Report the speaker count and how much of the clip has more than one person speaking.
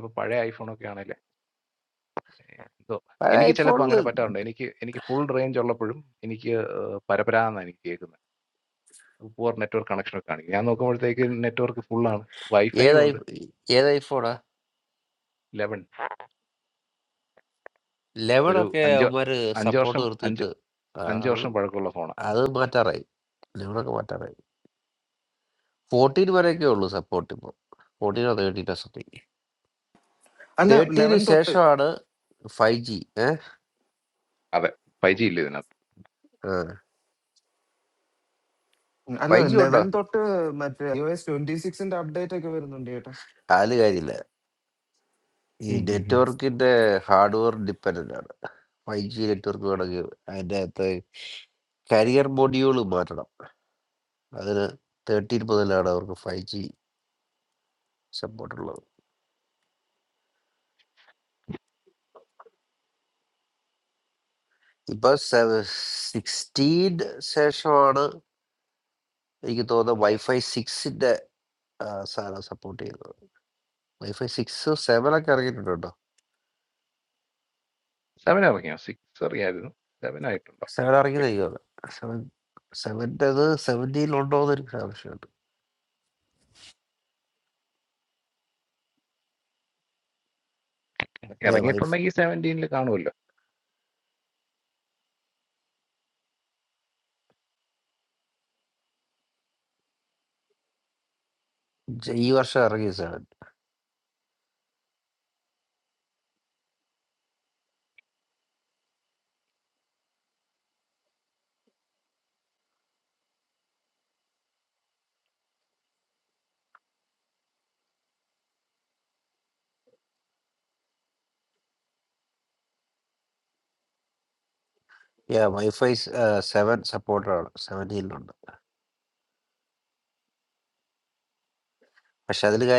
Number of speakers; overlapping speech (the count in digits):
3, about 4%